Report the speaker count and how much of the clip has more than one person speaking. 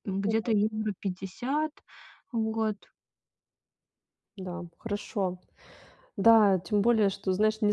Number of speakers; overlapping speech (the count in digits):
2, no overlap